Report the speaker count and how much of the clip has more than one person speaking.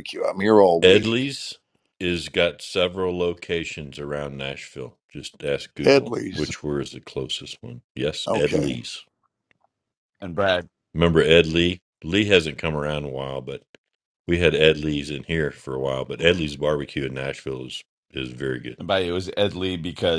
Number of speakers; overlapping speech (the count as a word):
three, about 7%